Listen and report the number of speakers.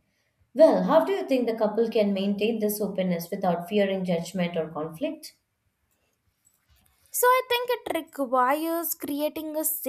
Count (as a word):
two